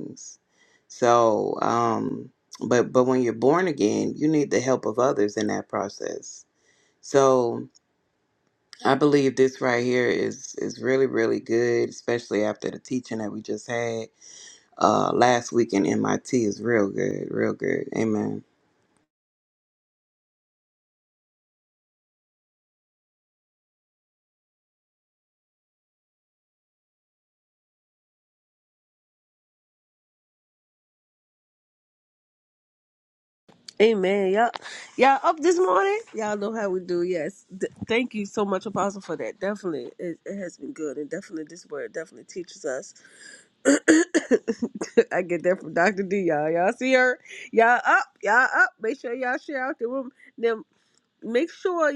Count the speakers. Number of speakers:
two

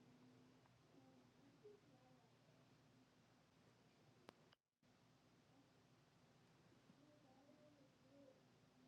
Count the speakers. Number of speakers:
zero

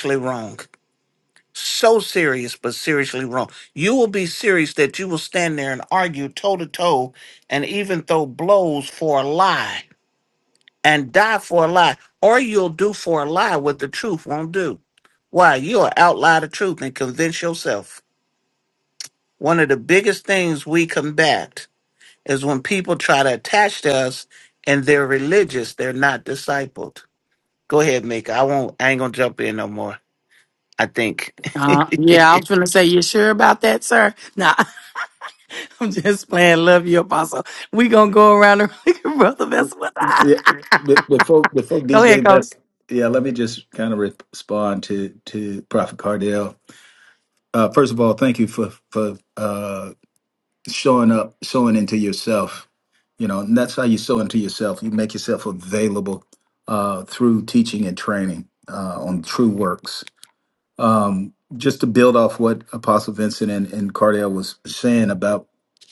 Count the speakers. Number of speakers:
three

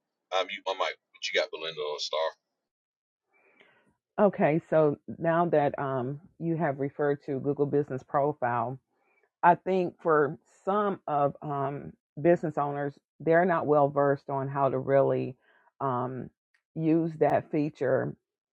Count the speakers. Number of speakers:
two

